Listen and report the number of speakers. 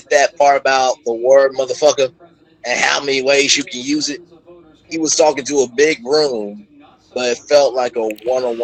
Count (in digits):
1